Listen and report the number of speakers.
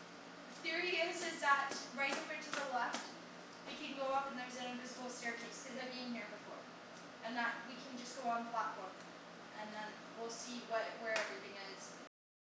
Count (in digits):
1